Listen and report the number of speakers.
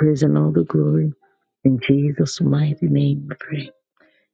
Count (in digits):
1